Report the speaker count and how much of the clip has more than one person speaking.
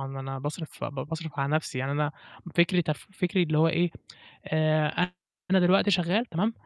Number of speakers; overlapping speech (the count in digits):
1, no overlap